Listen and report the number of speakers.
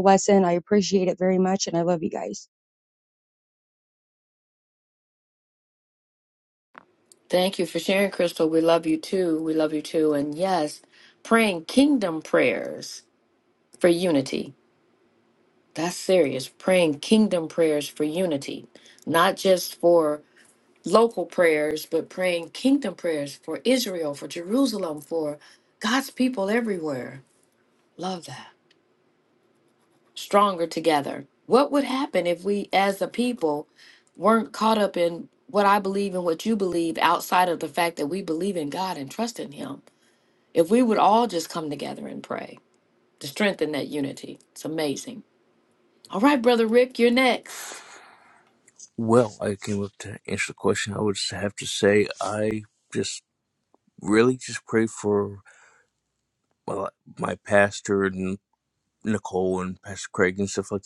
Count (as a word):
three